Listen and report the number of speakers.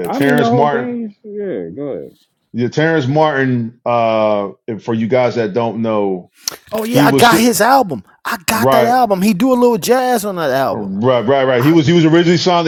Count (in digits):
3